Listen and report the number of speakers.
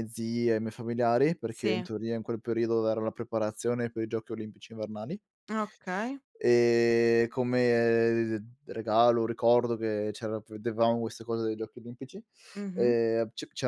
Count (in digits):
2